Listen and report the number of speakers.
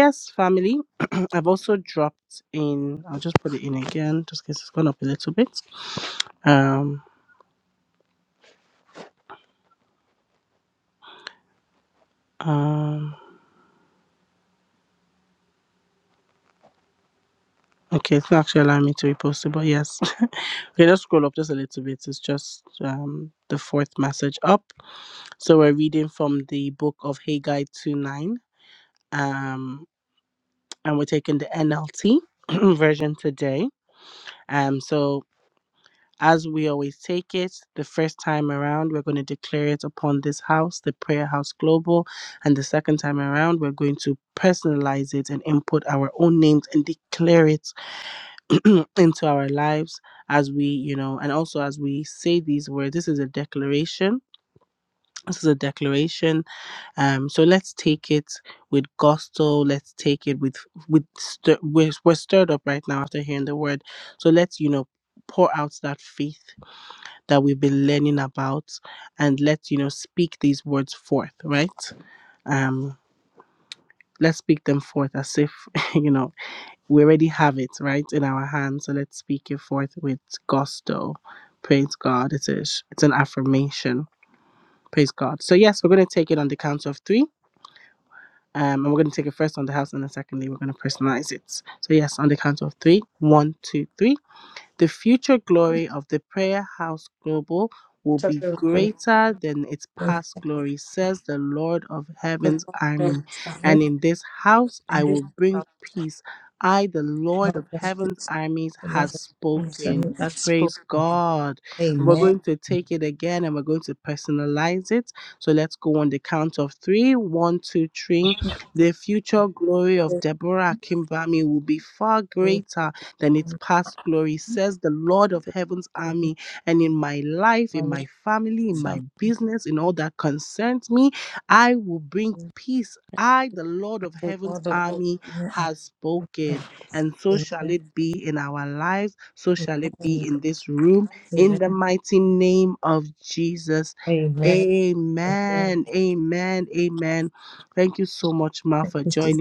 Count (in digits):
2